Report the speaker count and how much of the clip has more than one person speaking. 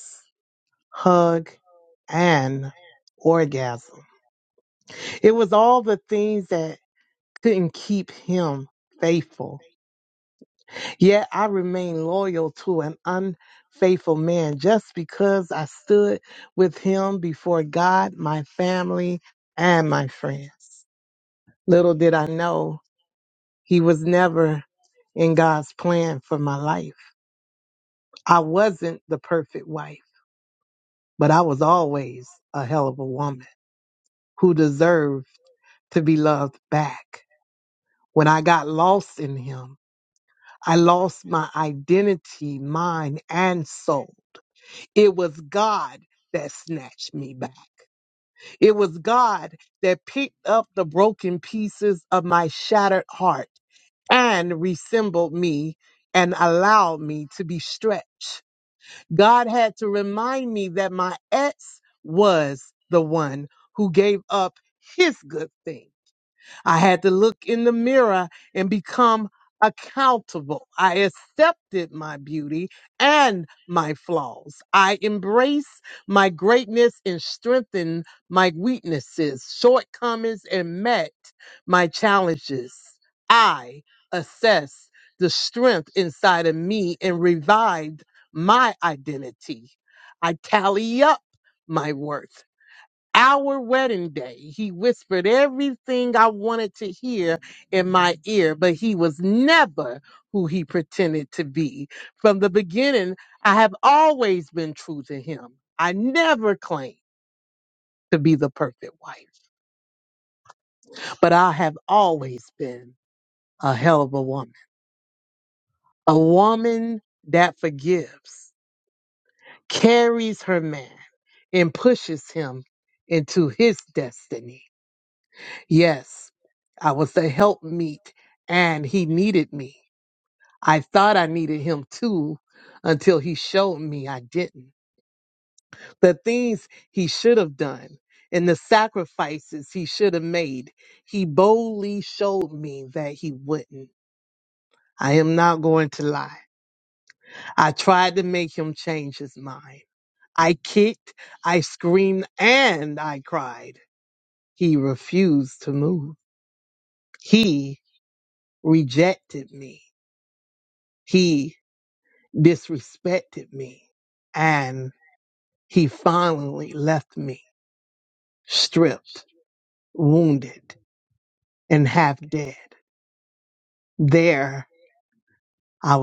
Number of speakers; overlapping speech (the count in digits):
1, no overlap